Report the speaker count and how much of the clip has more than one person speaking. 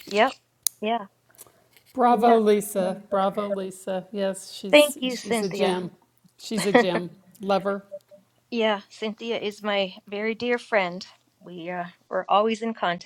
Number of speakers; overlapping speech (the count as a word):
two, about 11%